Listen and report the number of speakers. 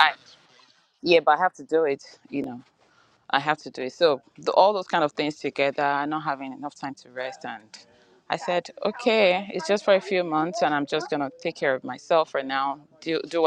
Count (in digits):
1